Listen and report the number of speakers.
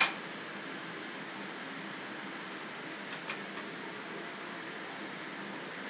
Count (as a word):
zero